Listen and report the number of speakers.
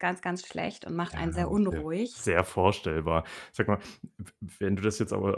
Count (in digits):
2